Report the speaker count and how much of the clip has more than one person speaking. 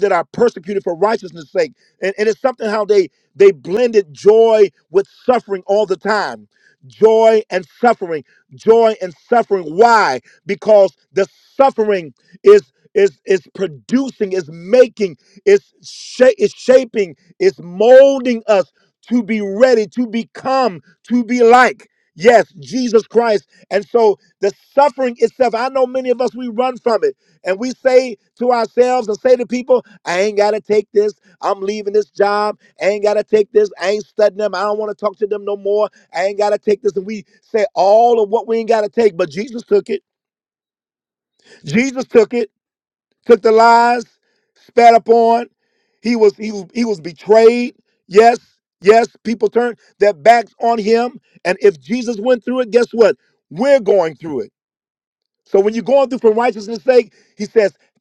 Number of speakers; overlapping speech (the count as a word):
one, no overlap